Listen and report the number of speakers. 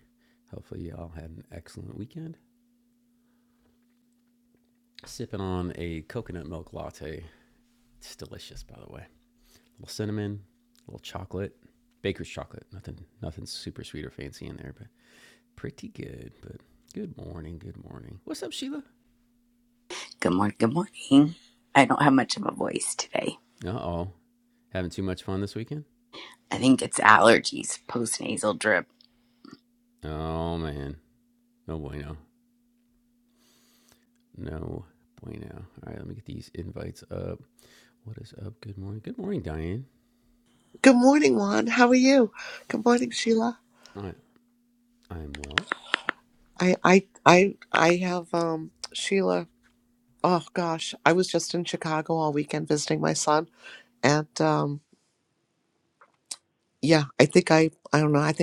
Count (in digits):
3